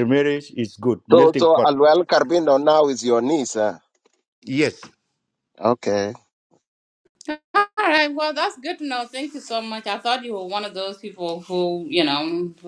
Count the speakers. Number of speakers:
three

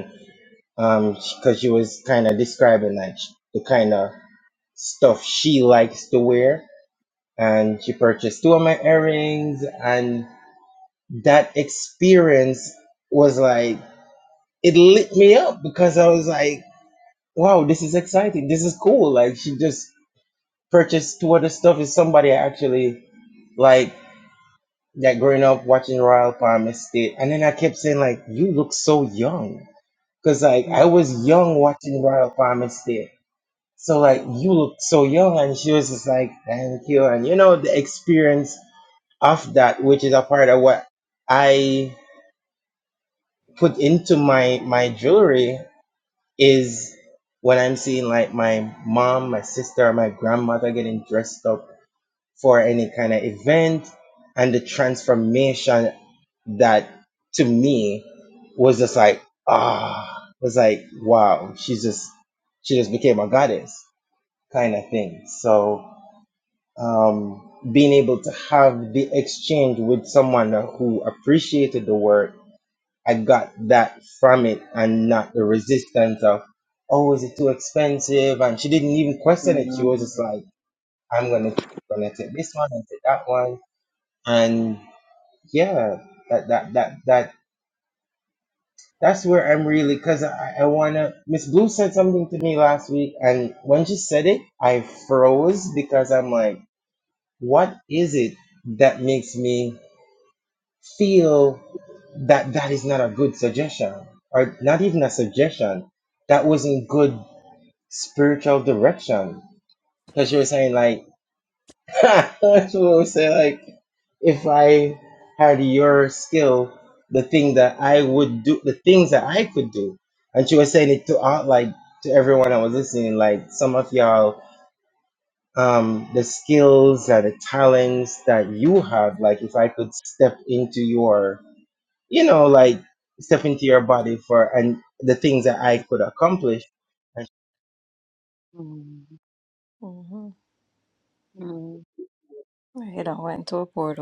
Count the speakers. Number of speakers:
three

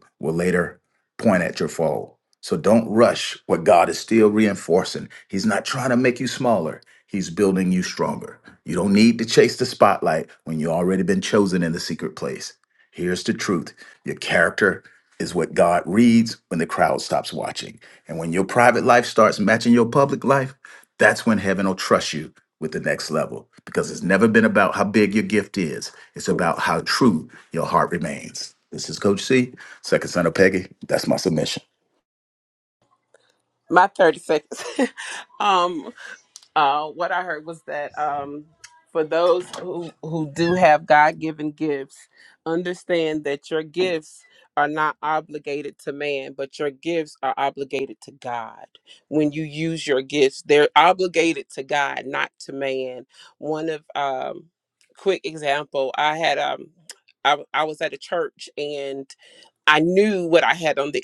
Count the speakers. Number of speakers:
two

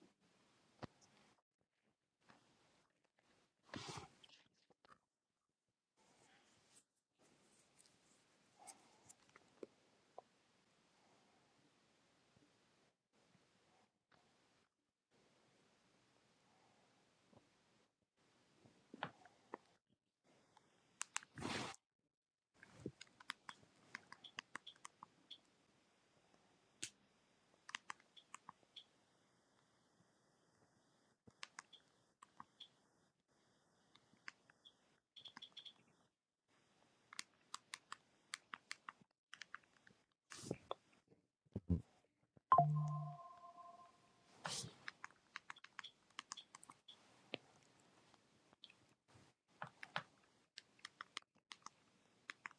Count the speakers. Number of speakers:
zero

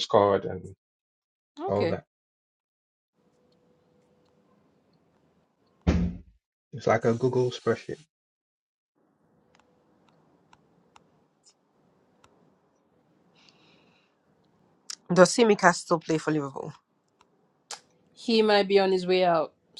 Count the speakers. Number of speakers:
three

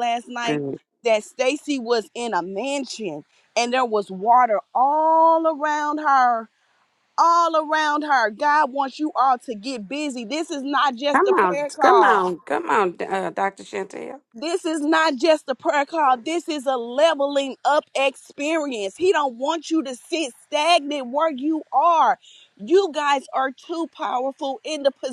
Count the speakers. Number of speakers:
two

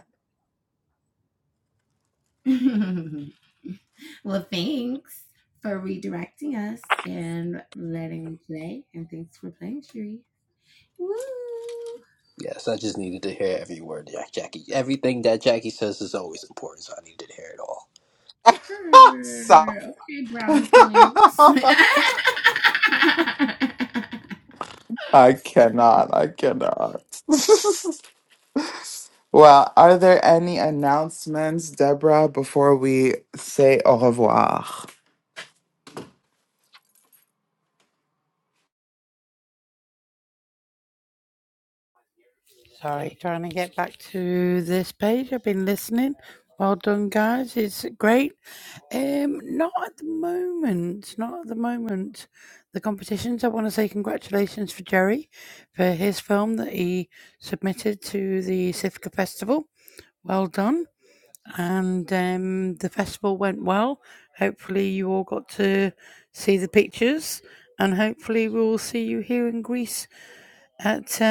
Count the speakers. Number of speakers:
four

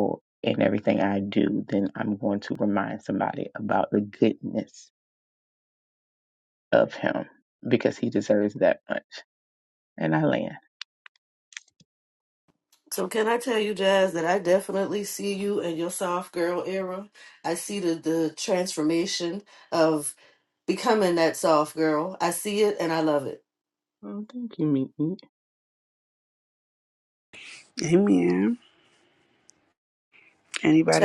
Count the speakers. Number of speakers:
three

